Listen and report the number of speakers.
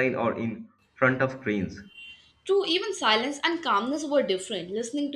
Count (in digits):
2